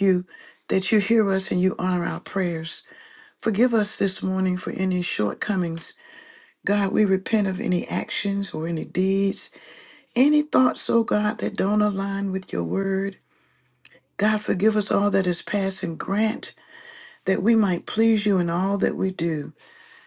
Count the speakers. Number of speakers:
1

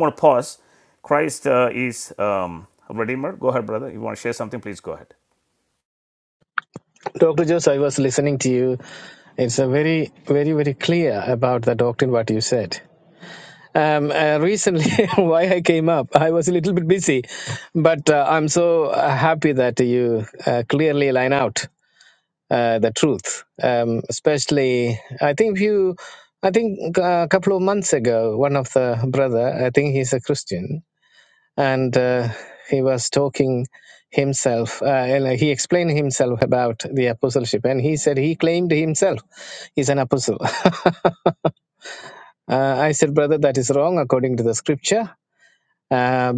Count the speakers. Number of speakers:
2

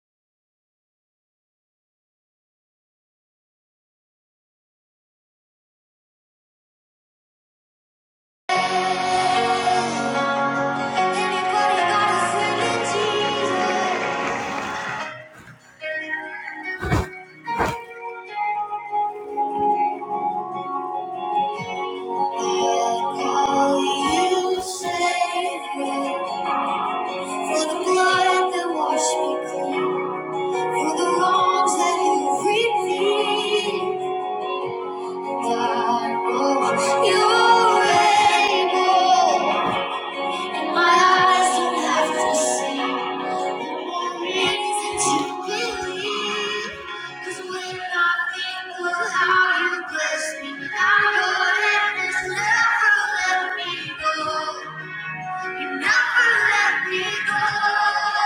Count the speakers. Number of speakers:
1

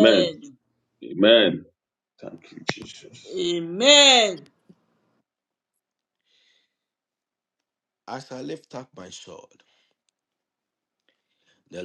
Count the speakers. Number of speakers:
3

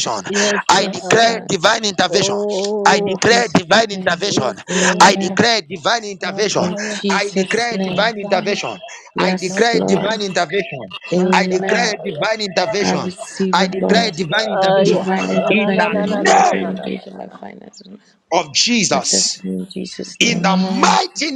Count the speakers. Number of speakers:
3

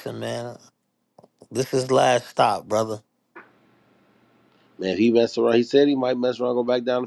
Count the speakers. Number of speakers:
2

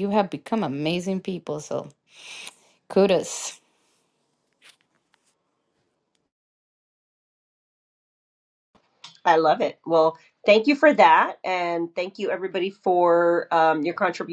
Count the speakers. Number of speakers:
2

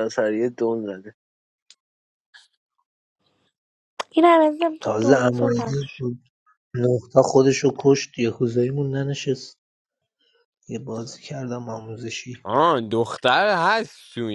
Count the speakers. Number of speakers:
4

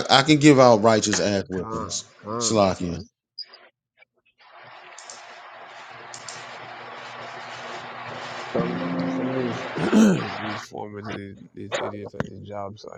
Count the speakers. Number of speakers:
2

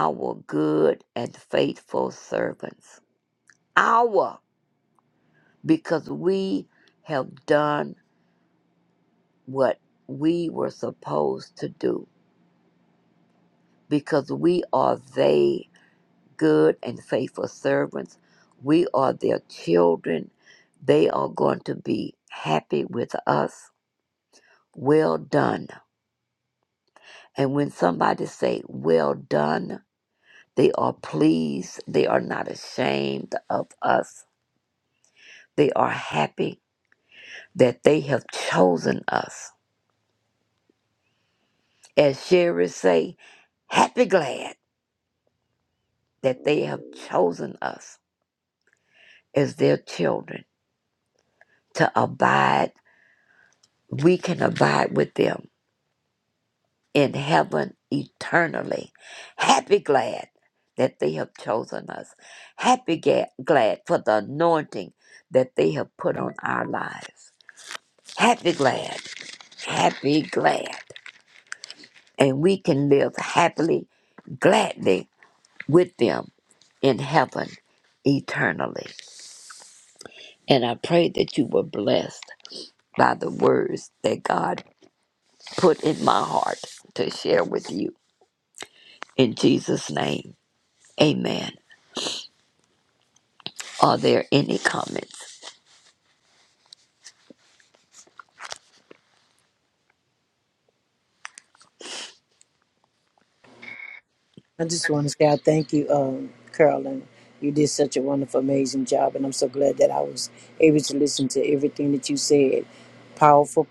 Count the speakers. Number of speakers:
2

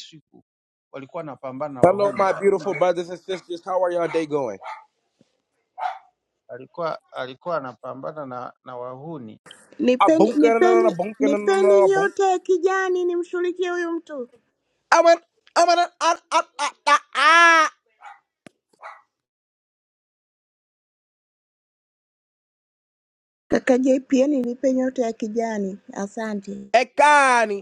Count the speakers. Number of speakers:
3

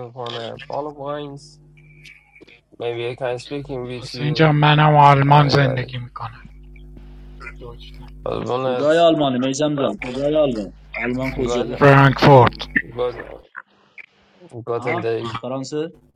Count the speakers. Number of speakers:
3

